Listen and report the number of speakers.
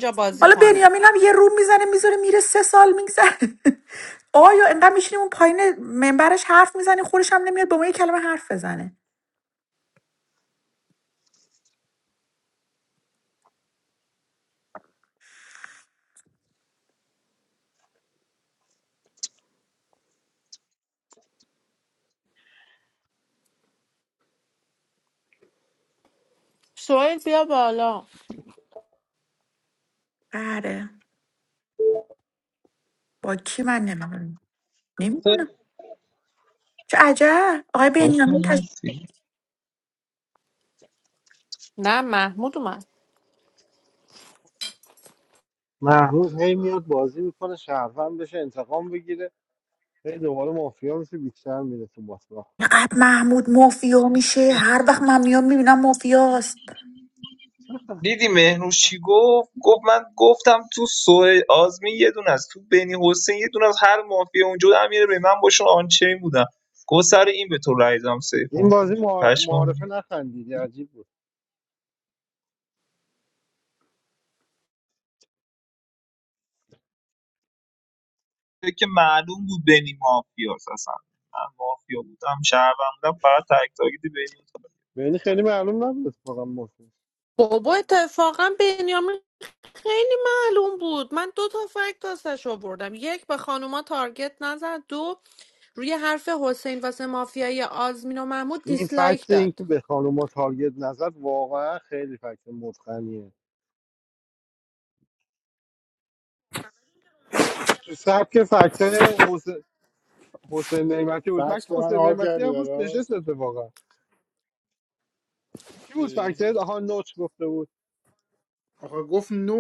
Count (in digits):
5